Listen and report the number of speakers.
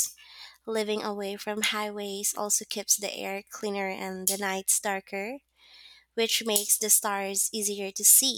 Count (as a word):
one